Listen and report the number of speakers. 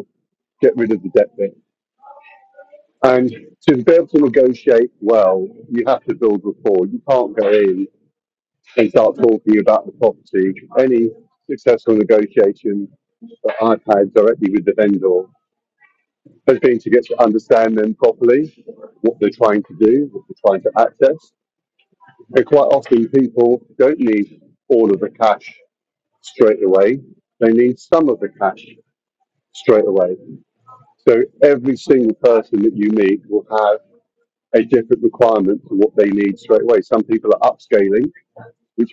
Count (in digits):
1